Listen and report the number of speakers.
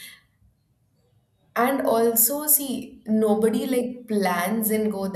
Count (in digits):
1